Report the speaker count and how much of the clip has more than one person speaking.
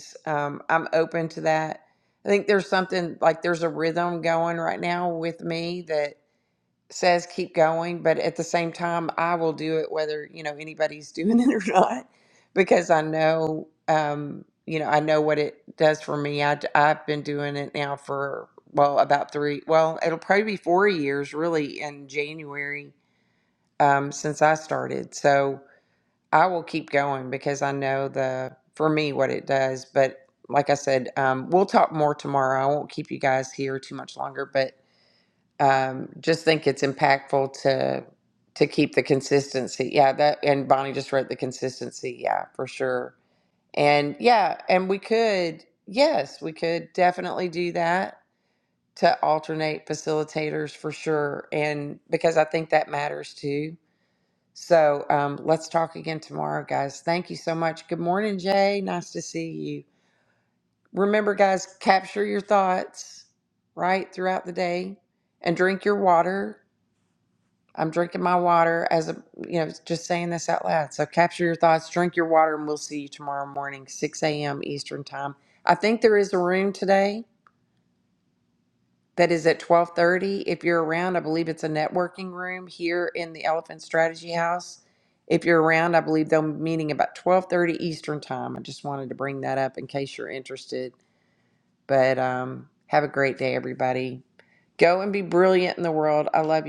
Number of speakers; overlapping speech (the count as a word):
one, no overlap